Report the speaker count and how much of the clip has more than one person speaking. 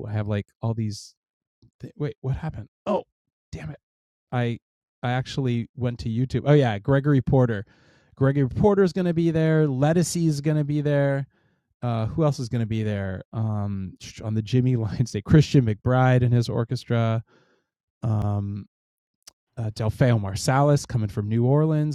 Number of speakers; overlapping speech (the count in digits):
1, no overlap